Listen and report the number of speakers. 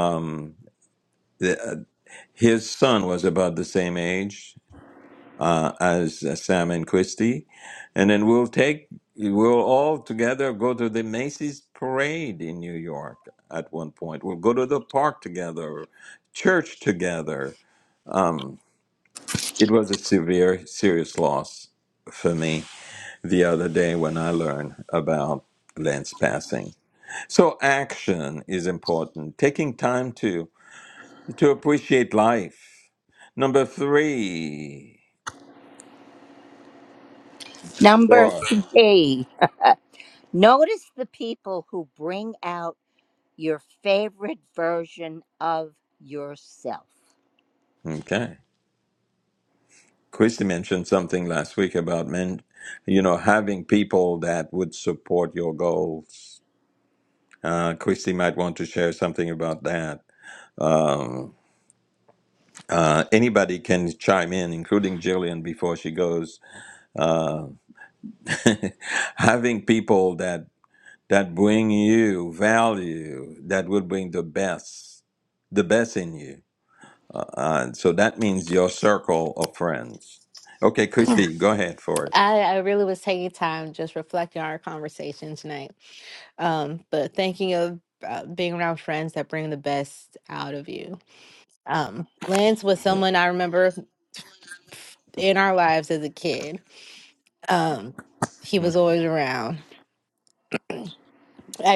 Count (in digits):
3